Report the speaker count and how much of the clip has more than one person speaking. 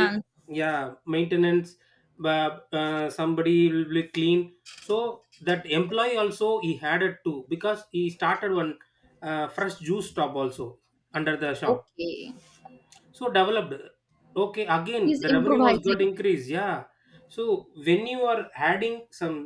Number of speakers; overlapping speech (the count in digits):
2, about 7%